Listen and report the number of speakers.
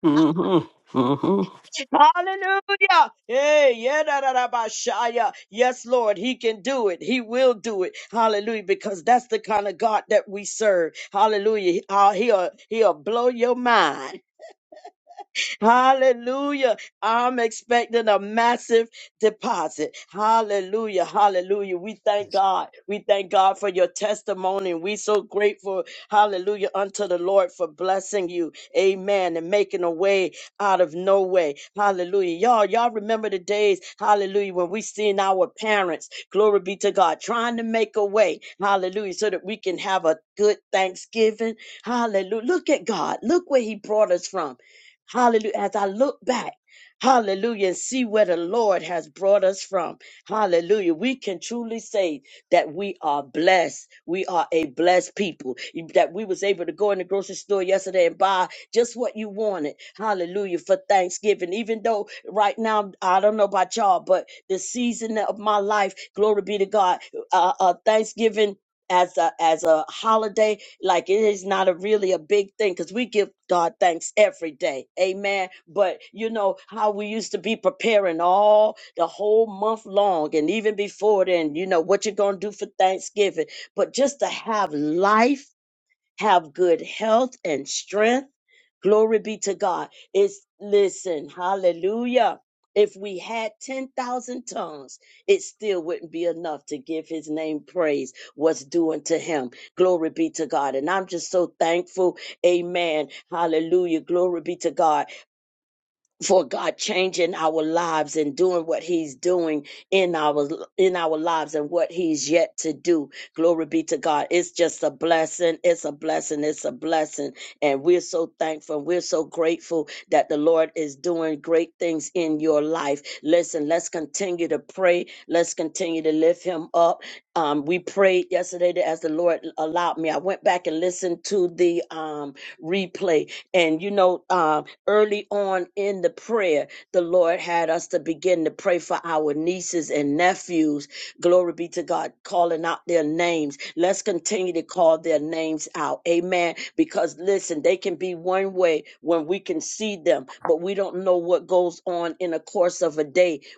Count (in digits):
2